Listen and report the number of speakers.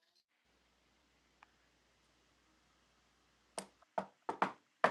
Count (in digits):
0